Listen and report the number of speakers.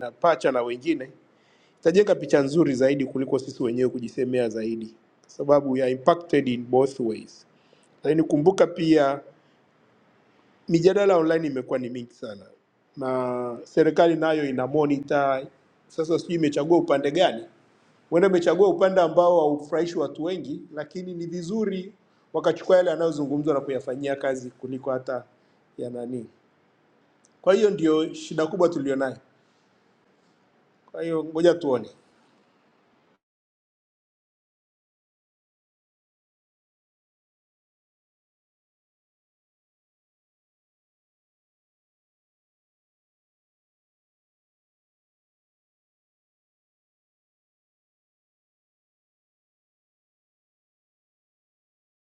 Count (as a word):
one